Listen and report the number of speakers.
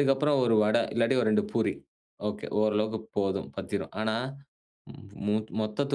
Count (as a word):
one